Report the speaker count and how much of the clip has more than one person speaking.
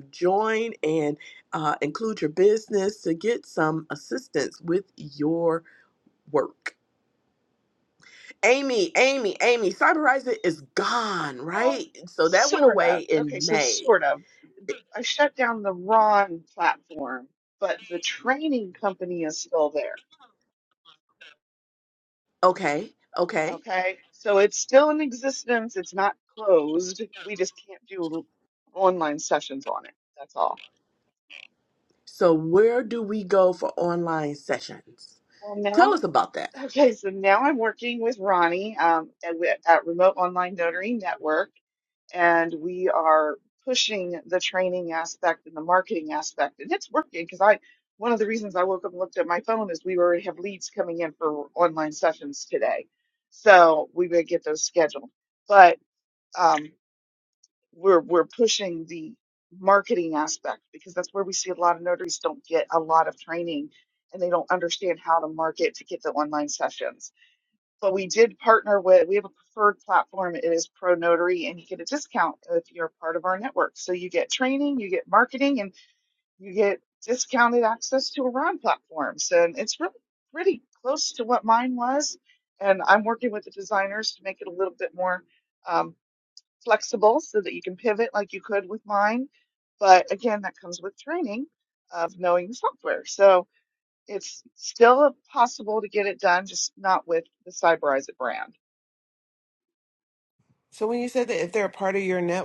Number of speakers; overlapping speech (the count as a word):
three, about 2%